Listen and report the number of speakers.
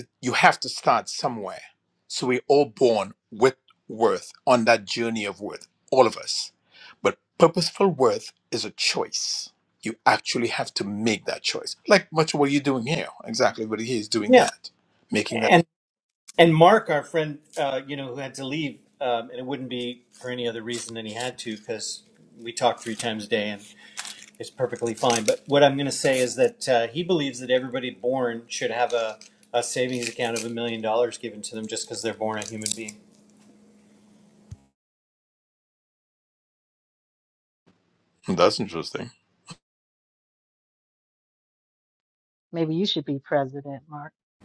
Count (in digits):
3